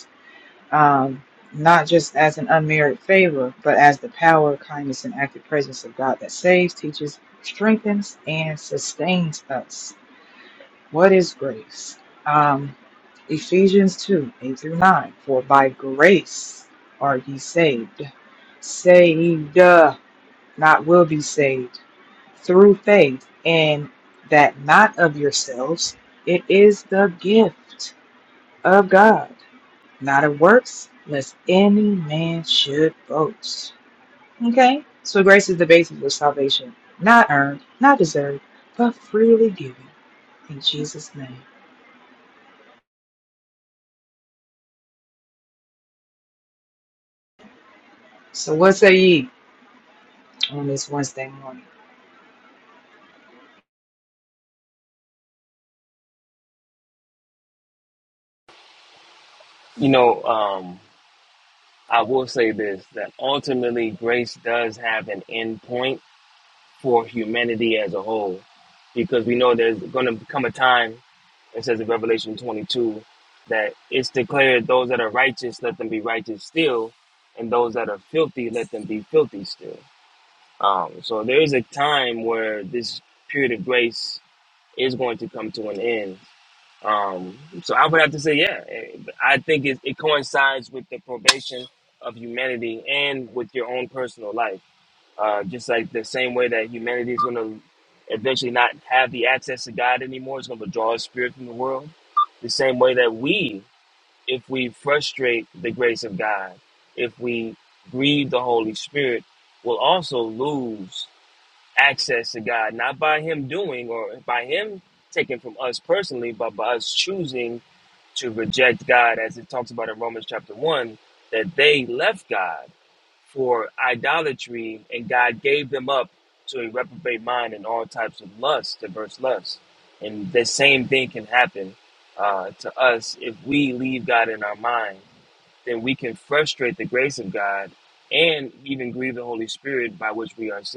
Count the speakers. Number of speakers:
2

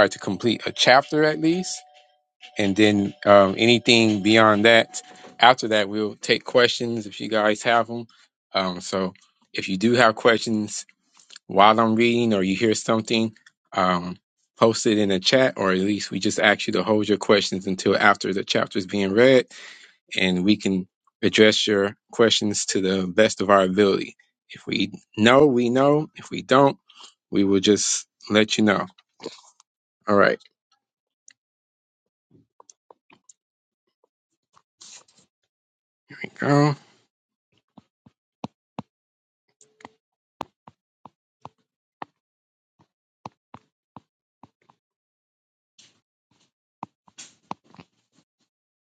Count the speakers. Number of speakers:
1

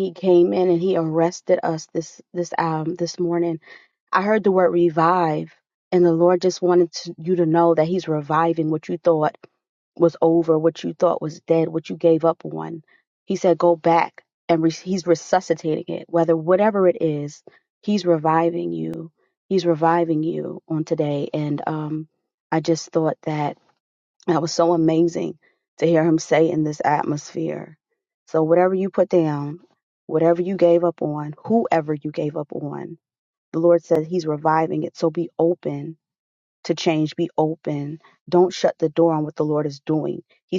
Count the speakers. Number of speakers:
1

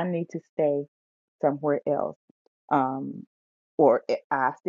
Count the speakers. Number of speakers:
1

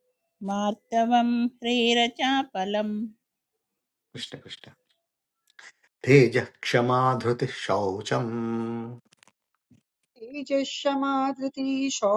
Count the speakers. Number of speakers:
3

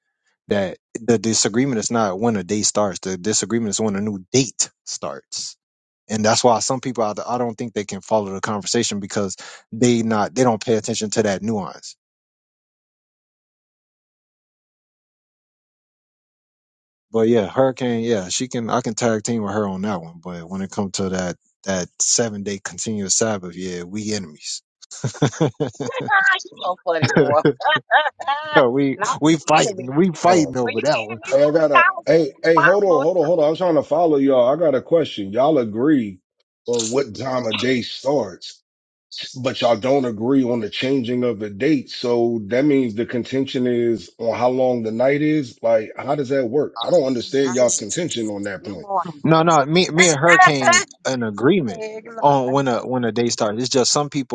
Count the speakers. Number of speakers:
3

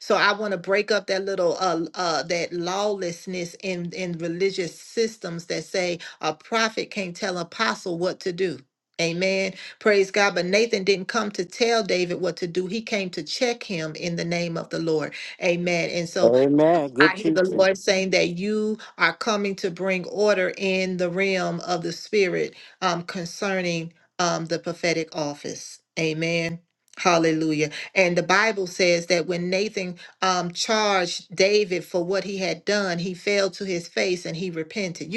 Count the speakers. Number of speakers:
2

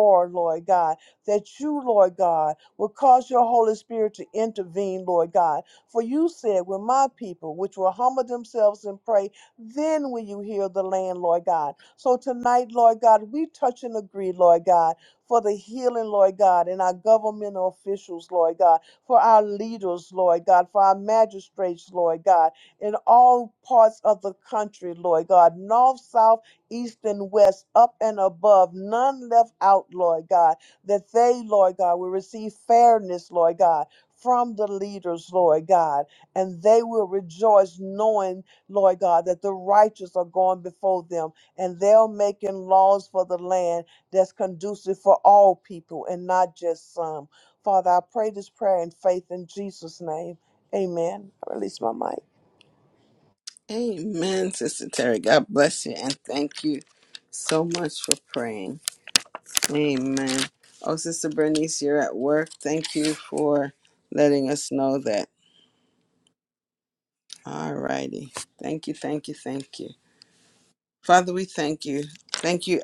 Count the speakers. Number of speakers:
2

